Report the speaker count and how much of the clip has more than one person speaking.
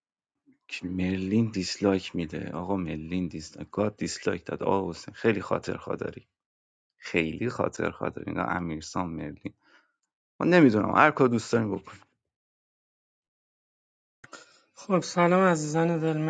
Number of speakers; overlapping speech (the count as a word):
two, no overlap